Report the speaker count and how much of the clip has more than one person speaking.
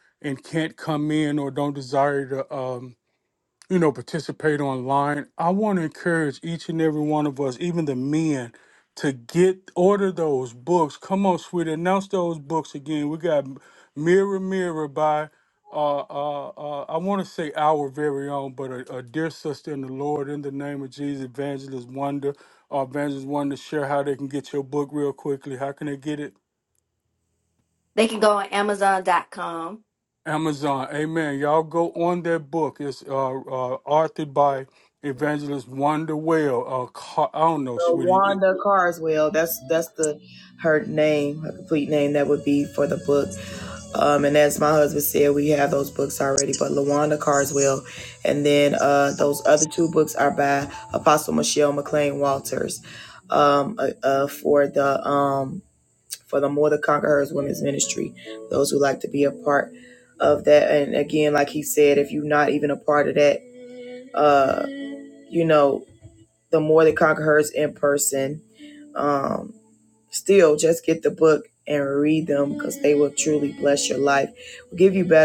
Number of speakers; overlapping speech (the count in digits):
3, about 1%